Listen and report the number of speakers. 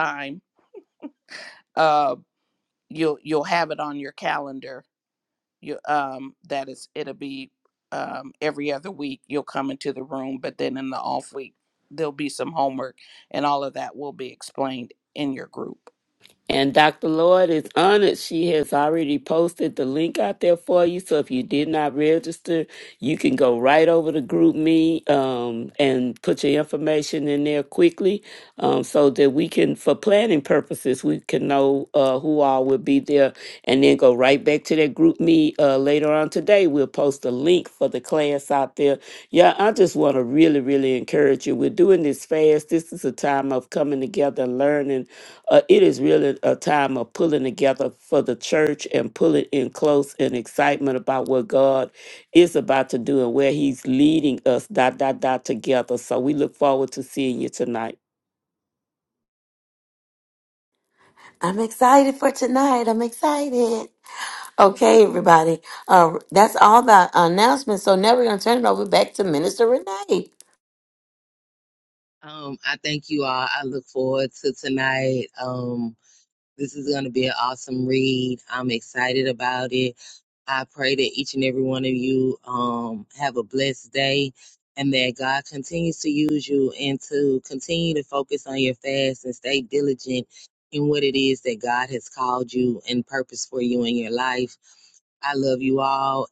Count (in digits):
4